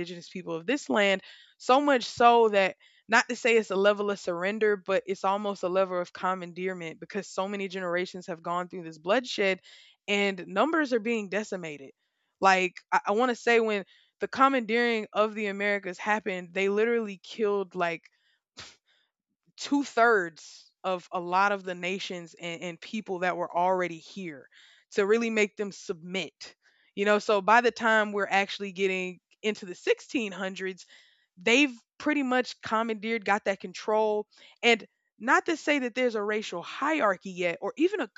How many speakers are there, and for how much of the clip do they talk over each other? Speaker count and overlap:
1, no overlap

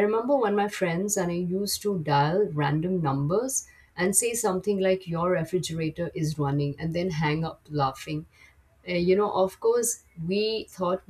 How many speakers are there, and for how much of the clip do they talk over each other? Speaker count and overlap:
1, no overlap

